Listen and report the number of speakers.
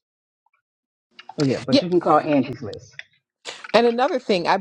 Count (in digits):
2